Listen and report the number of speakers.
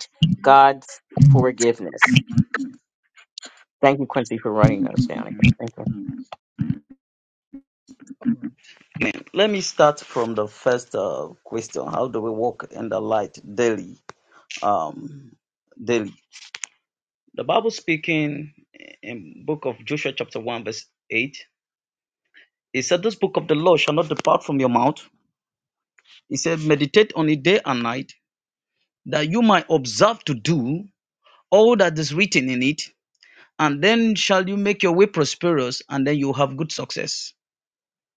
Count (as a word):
two